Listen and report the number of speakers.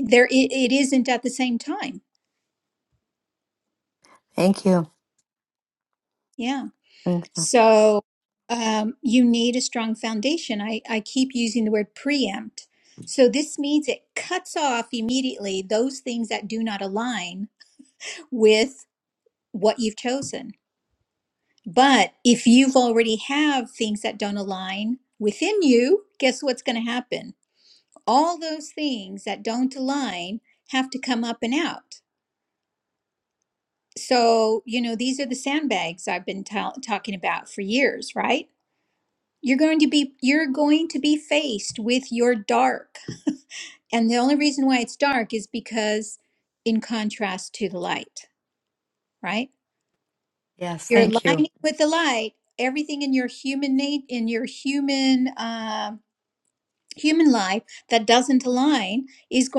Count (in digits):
2